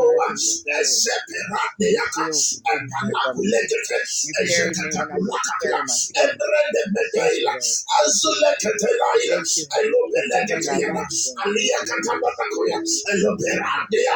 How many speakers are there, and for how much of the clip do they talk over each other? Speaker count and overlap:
two, about 26%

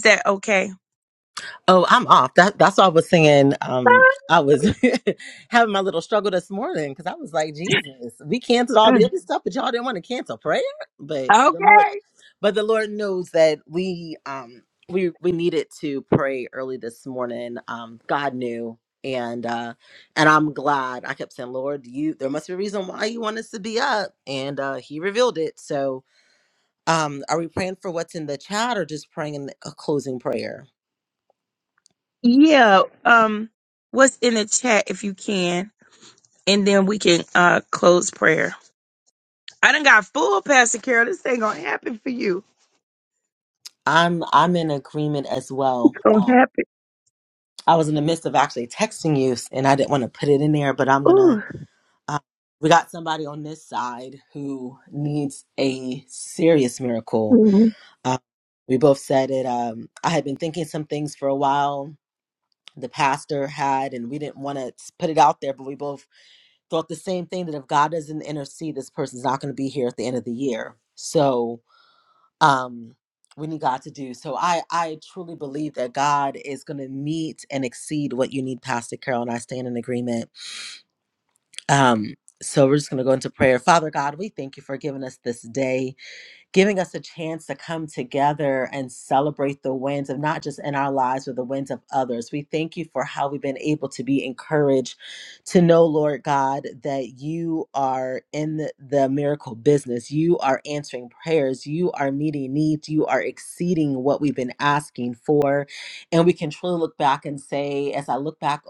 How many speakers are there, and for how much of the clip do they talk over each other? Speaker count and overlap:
two, about 1%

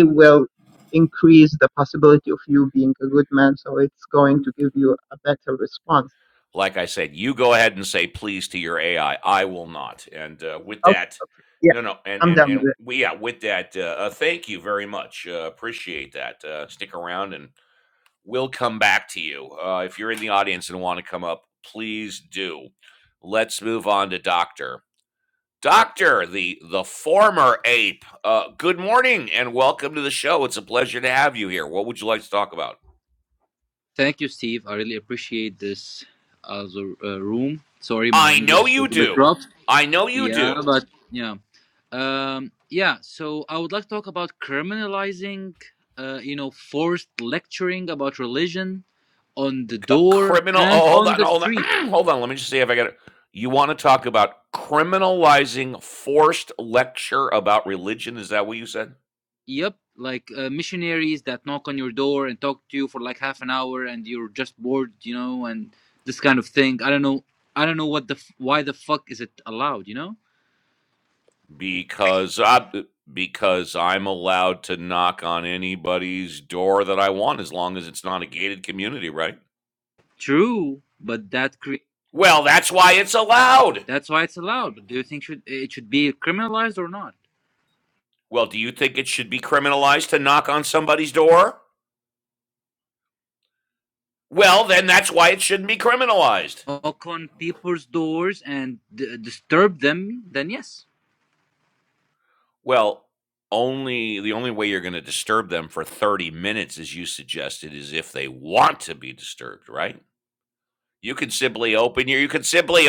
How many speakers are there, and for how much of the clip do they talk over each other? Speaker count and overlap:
three, about 4%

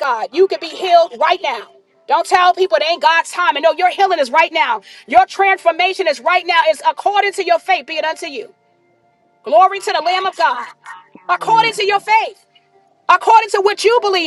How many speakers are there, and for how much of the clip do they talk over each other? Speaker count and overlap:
two, about 16%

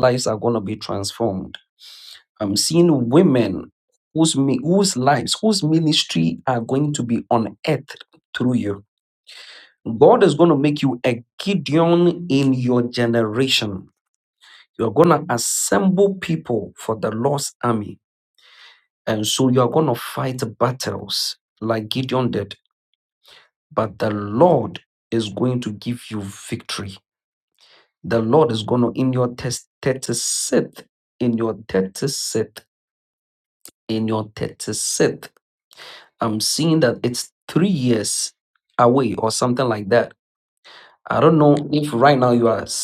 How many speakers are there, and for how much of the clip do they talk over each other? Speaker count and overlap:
one, no overlap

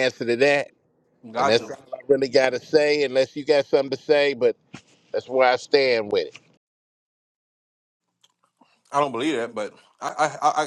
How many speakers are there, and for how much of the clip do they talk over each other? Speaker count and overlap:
two, about 3%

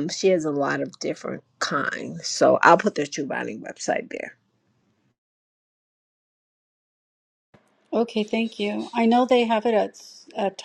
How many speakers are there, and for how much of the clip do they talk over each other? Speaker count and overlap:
two, no overlap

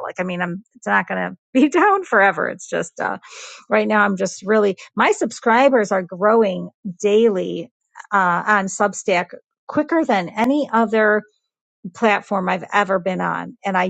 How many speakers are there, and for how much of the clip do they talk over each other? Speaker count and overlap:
one, no overlap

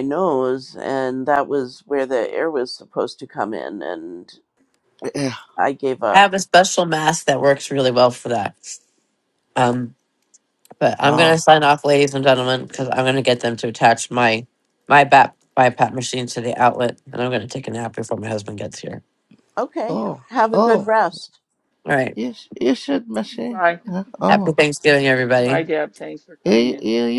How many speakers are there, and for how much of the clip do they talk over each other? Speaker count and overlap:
four, about 8%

